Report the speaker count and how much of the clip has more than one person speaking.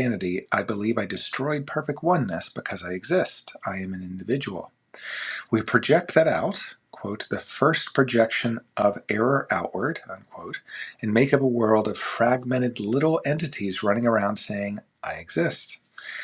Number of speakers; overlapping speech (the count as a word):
one, no overlap